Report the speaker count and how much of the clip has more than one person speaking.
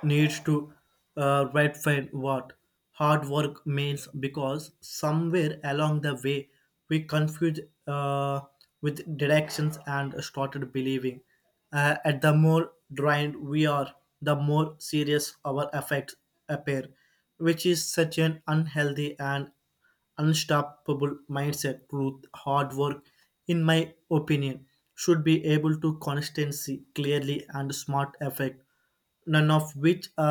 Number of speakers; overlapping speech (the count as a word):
one, no overlap